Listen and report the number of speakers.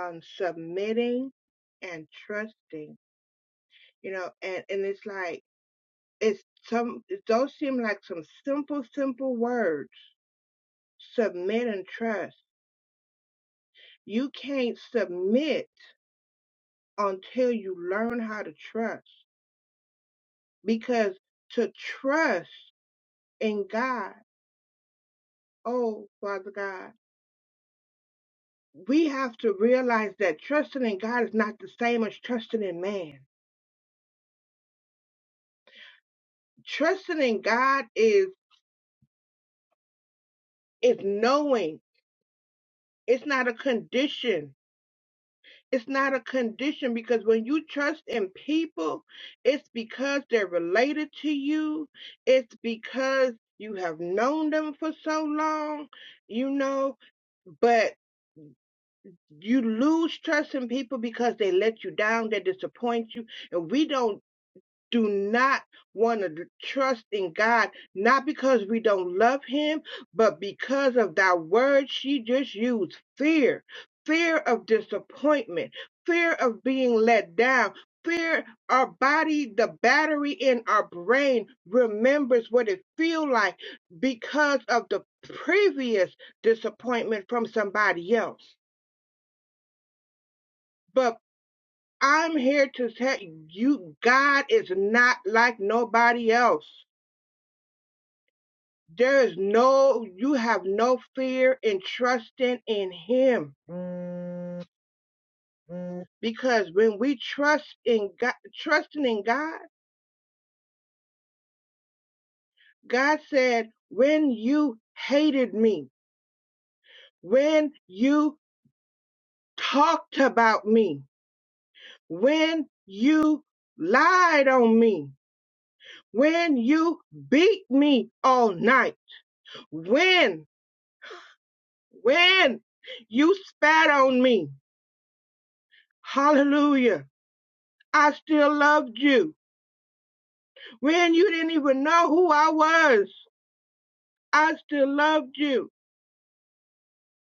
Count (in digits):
1